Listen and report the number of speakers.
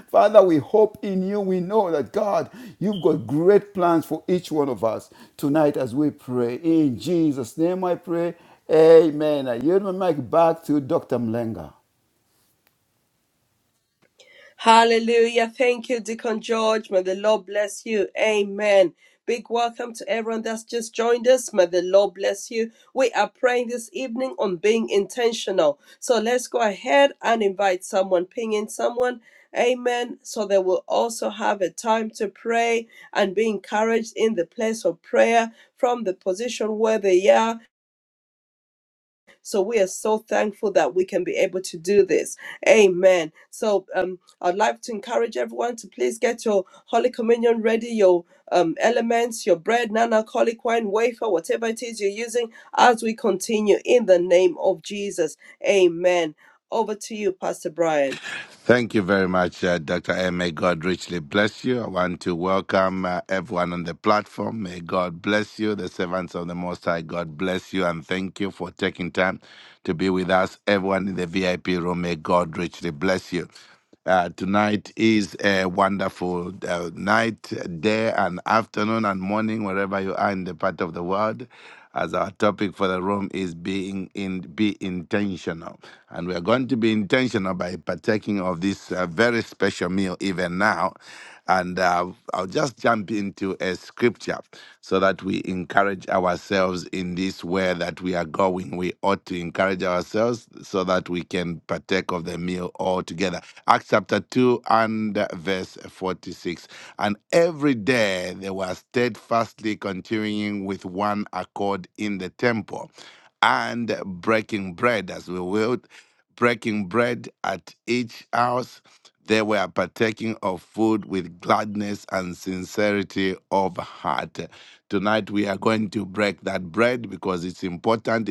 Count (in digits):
3